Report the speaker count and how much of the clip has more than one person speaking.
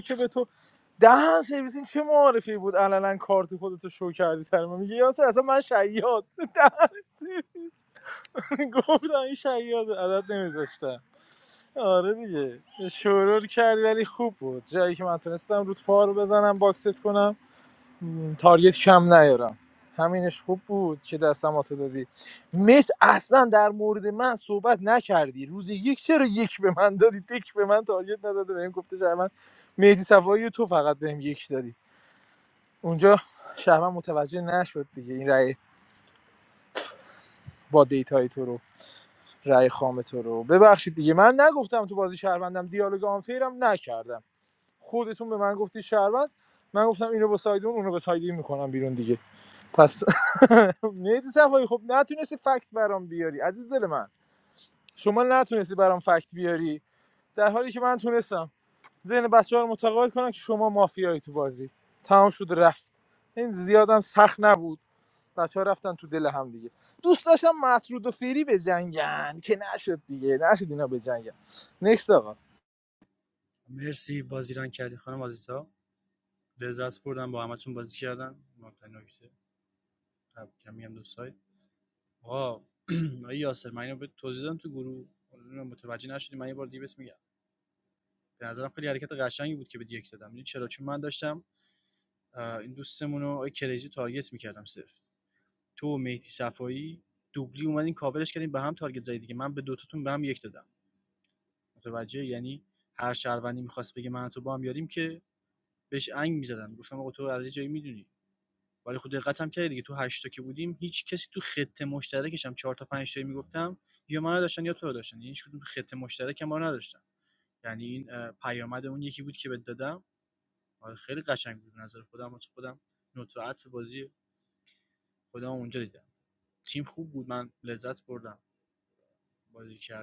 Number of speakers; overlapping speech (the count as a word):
two, no overlap